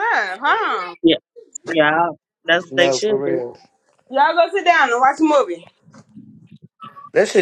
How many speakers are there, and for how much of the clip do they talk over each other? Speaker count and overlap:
3, about 9%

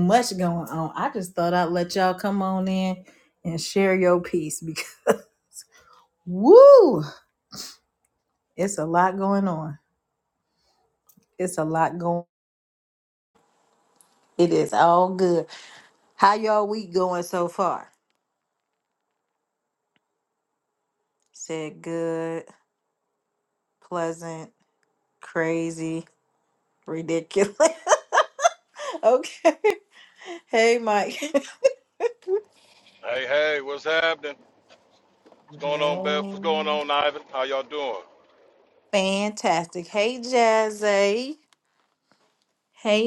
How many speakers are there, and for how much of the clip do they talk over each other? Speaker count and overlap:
2, about 2%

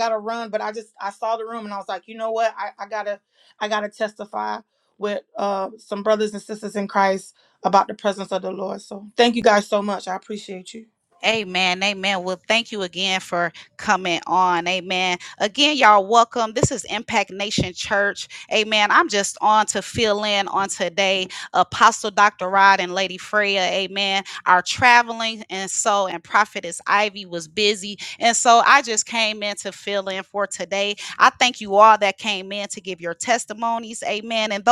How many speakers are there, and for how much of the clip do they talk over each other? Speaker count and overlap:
2, no overlap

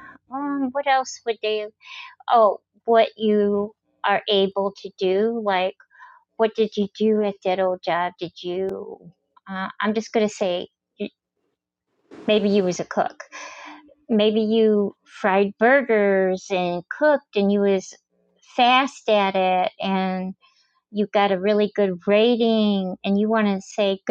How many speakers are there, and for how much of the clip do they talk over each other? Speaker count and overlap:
1, no overlap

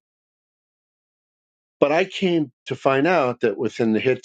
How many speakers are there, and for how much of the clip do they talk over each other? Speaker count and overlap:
1, no overlap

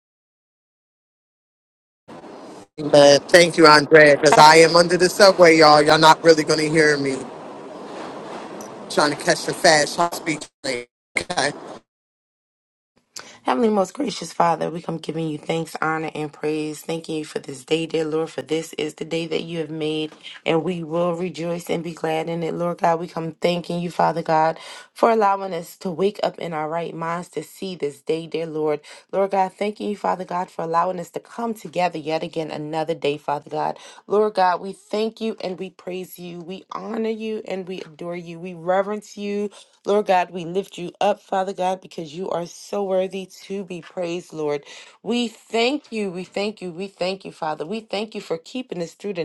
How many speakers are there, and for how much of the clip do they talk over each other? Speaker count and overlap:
2, no overlap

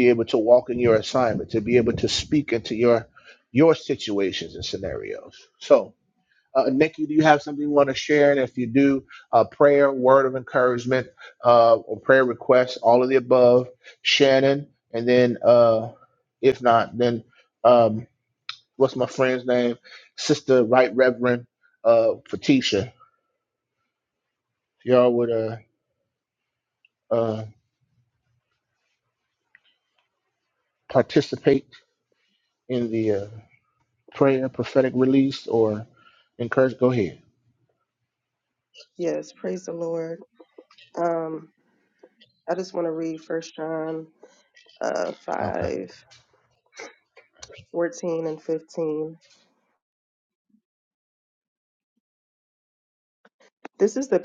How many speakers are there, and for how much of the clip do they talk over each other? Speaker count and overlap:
2, no overlap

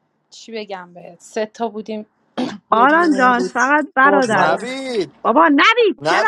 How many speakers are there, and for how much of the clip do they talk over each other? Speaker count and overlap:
3, about 29%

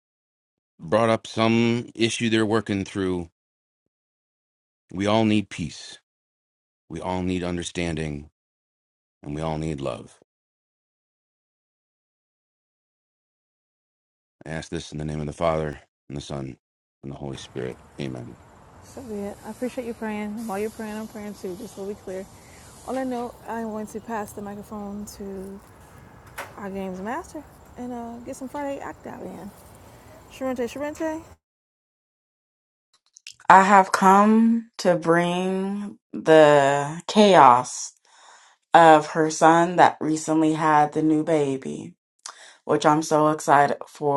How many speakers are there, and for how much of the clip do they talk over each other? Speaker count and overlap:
3, no overlap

